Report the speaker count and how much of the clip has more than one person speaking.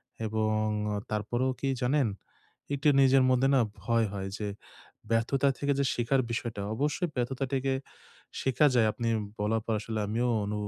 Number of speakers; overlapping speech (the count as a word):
one, no overlap